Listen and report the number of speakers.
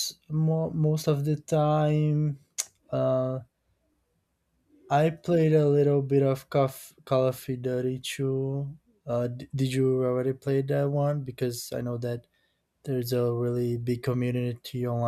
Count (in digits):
1